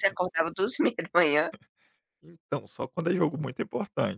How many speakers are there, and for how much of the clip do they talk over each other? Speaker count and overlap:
2, about 3%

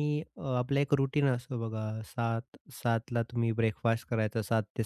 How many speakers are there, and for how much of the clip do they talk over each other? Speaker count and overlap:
1, no overlap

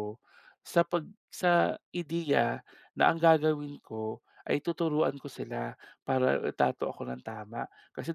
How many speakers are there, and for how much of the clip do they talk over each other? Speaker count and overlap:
1, no overlap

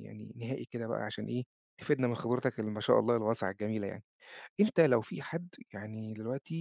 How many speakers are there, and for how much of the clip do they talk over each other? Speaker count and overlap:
1, no overlap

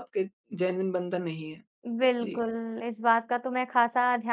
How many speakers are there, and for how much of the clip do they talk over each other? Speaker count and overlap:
2, about 4%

